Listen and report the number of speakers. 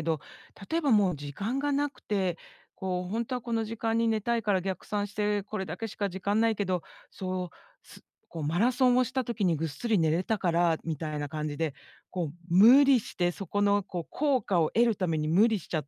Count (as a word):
one